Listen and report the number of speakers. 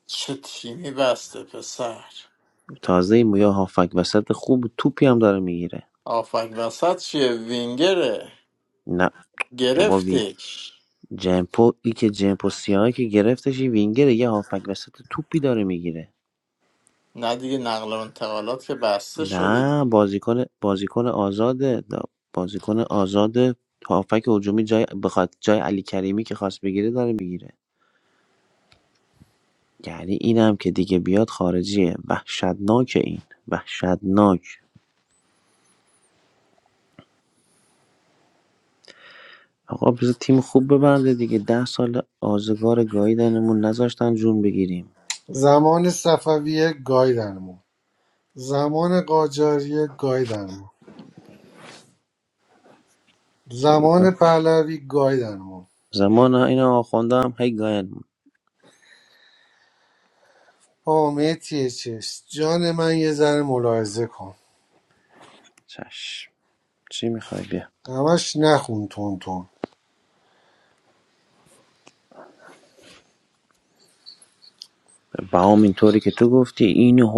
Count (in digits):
3